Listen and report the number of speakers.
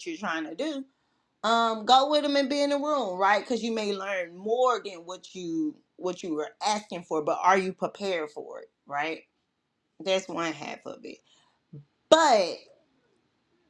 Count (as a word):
one